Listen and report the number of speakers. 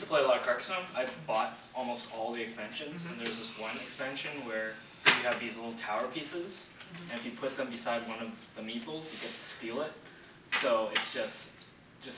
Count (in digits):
1